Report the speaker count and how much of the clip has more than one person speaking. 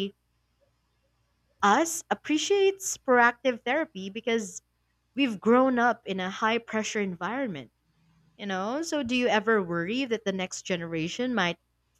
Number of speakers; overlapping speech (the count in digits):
1, no overlap